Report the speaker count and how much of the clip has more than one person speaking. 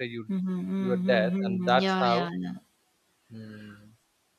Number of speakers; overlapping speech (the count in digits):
2, about 34%